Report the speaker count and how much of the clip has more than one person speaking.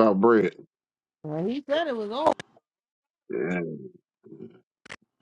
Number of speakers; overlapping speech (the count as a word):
two, no overlap